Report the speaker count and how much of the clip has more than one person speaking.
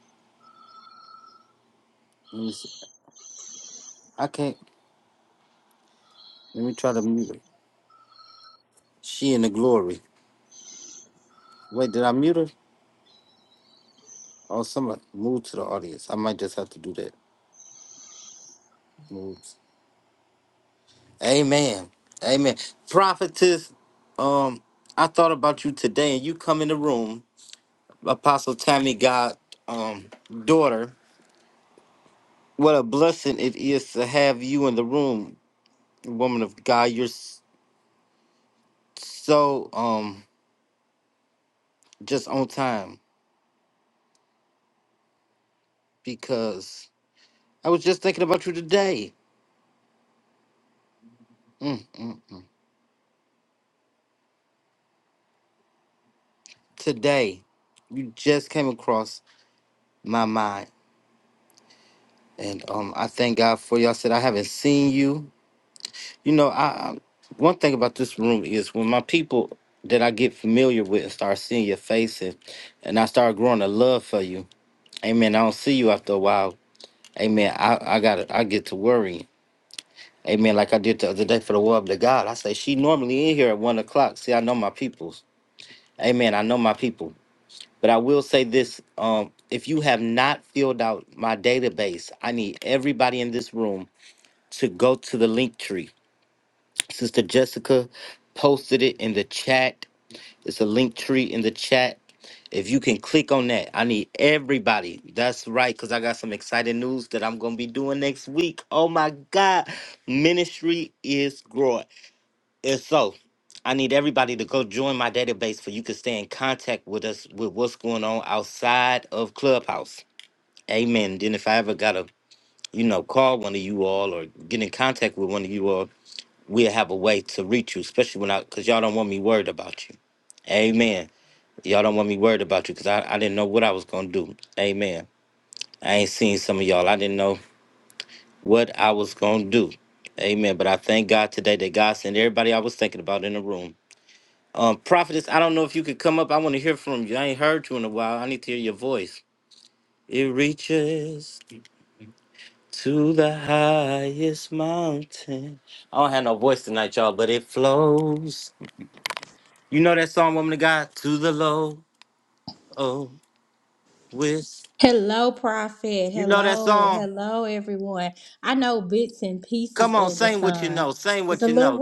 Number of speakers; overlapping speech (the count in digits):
2, about 1%